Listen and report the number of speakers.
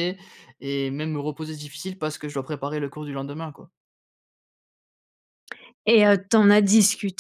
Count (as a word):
two